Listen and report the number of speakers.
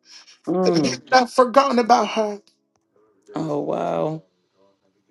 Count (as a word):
two